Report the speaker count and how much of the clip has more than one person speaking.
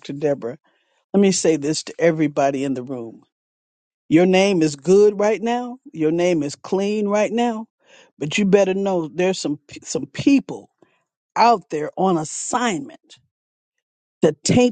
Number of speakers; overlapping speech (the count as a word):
one, no overlap